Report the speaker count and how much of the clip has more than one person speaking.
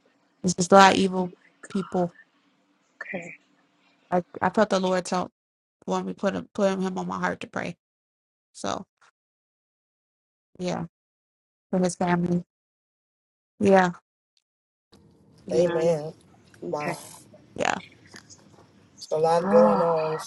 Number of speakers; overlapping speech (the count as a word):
three, about 8%